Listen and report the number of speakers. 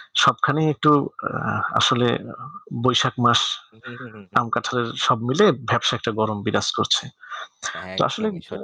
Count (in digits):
2